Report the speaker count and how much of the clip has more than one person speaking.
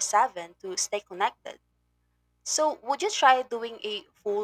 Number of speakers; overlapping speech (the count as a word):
one, no overlap